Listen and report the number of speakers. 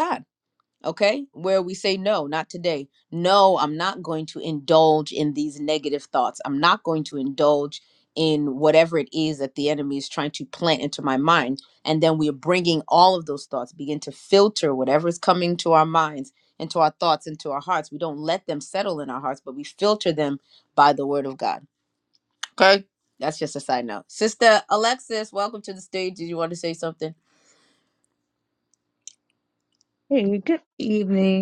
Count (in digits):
2